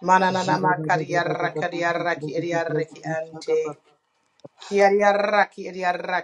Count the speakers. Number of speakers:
one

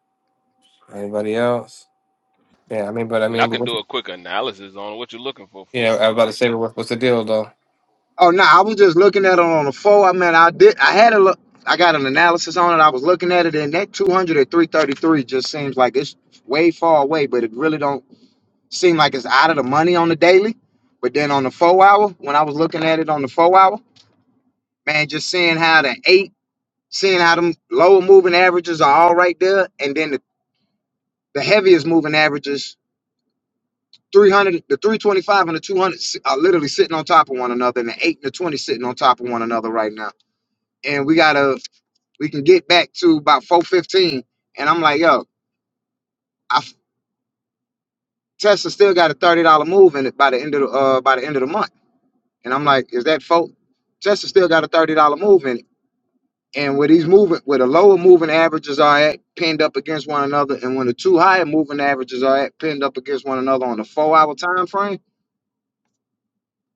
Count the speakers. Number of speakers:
three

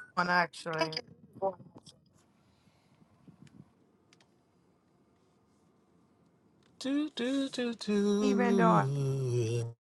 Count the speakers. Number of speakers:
two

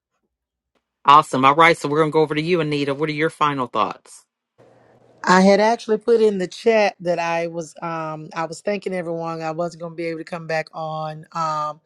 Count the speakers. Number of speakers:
two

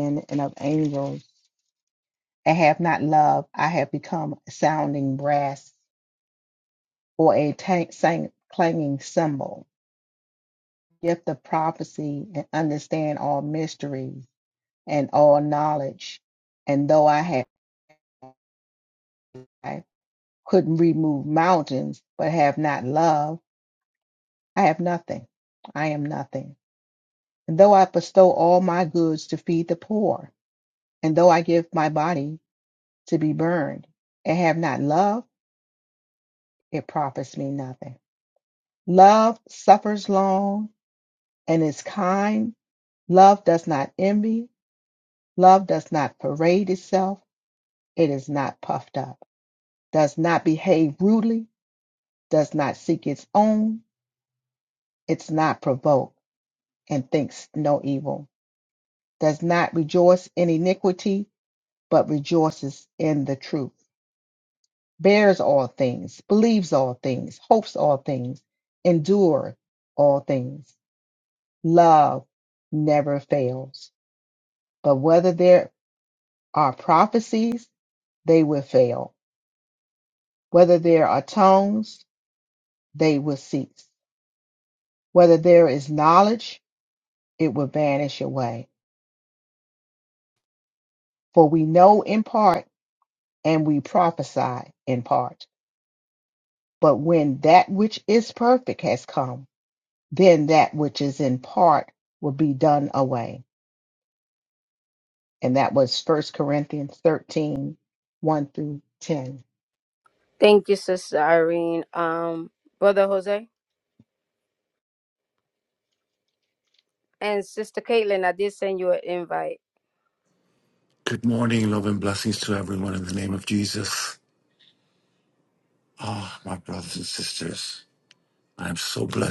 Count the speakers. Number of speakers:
three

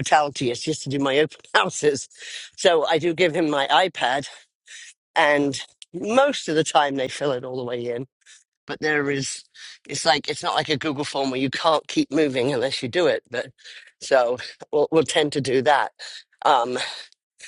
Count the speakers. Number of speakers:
one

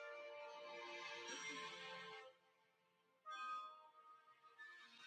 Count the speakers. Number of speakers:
zero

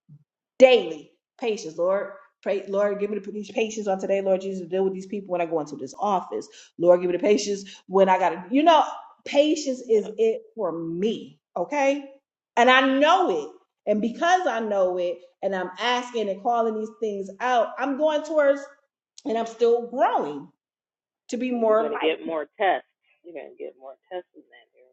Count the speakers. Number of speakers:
two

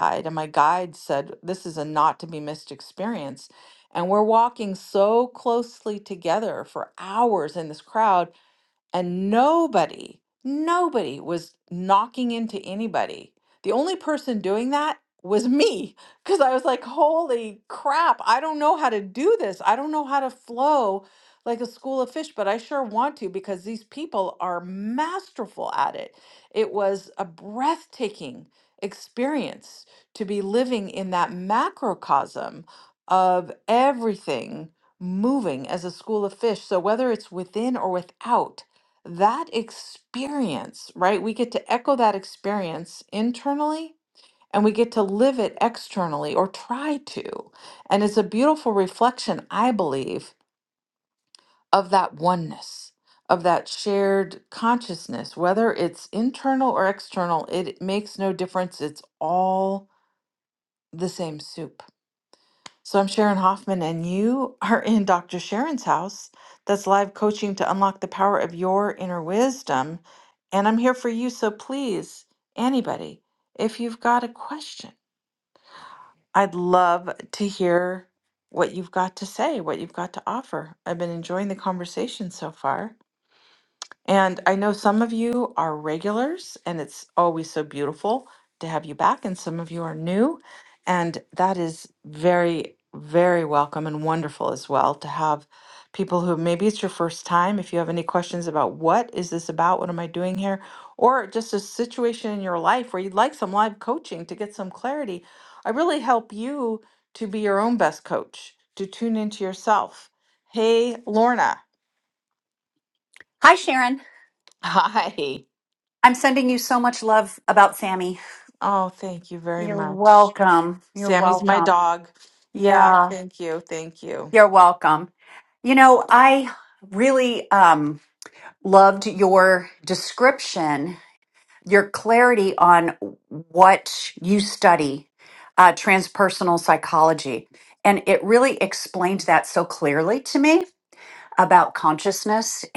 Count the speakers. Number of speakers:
two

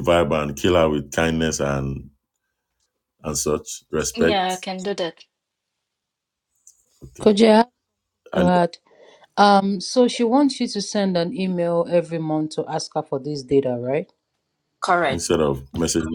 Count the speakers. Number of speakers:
three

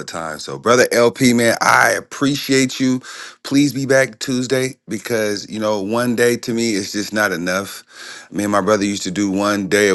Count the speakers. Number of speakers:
one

